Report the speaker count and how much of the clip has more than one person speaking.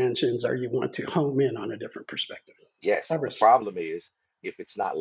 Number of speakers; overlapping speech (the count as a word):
two, about 7%